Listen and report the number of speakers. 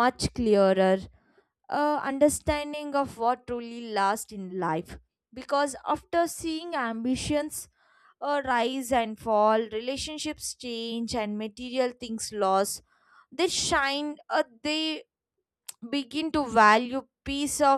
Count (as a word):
one